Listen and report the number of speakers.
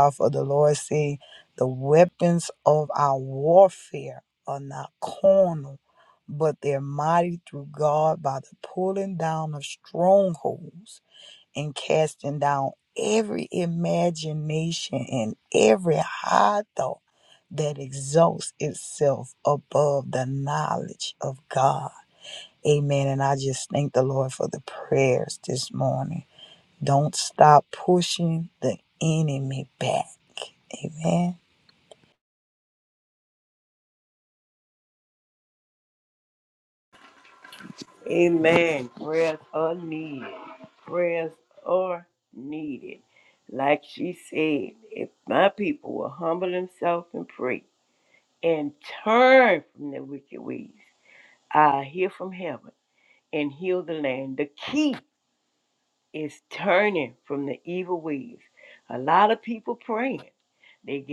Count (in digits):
2